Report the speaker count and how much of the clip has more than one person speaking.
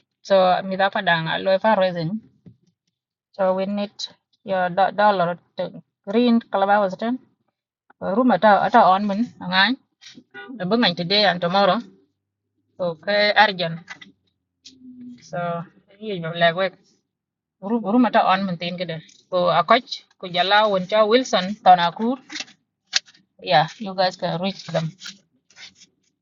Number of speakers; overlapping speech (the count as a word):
one, no overlap